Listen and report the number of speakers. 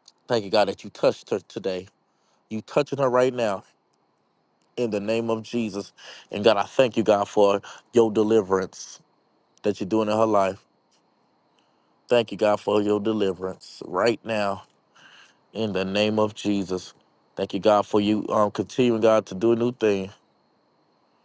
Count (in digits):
1